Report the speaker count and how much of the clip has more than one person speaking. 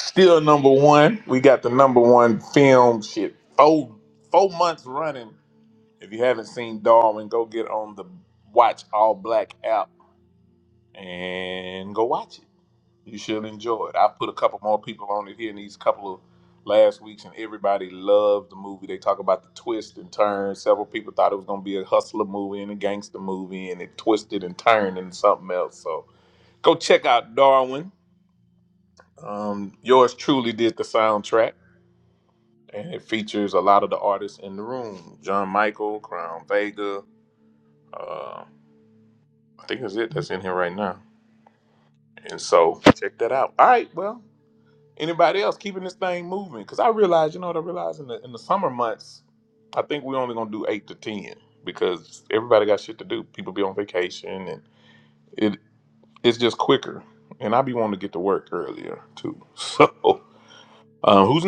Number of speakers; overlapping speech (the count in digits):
1, no overlap